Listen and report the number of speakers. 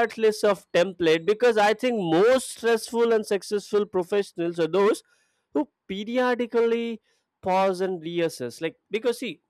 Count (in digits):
1